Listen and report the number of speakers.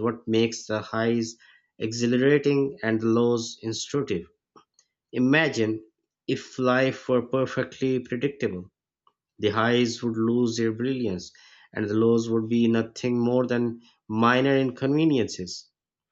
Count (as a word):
one